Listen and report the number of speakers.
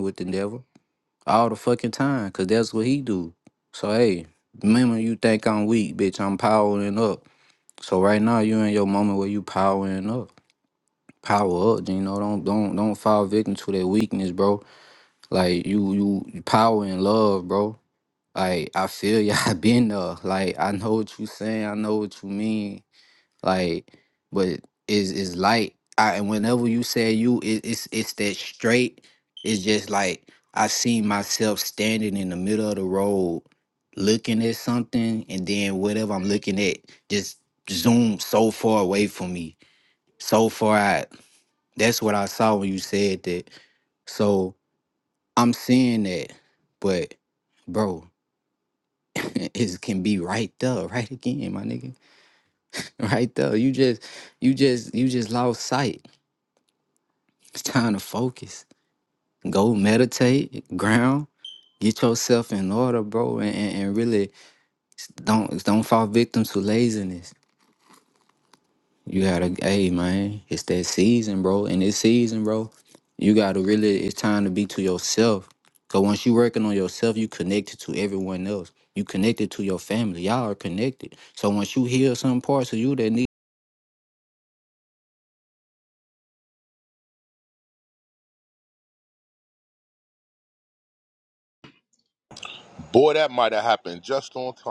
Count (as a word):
two